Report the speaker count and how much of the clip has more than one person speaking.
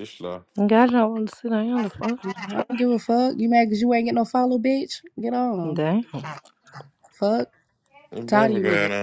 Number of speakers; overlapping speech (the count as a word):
three, about 8%